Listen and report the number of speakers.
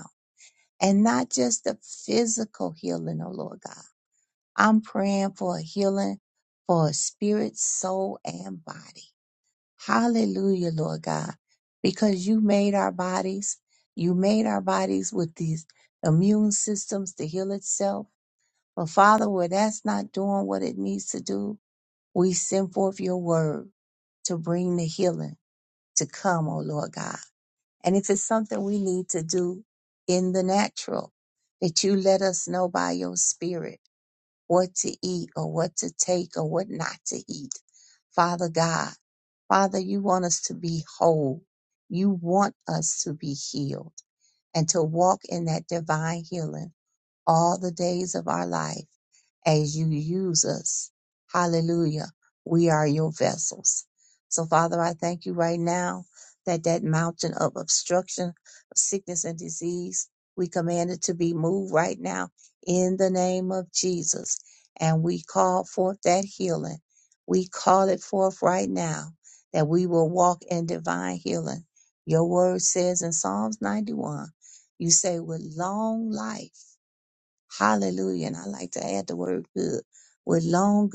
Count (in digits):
1